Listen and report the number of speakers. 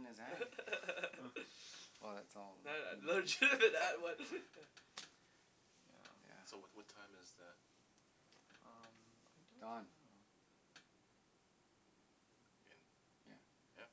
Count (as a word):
four